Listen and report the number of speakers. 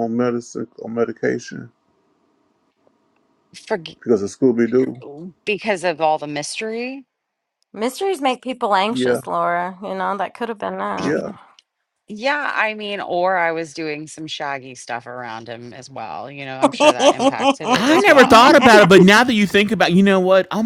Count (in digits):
4